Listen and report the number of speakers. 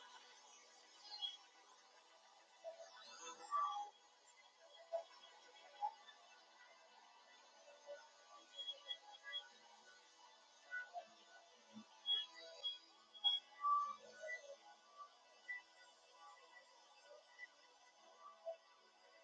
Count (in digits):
0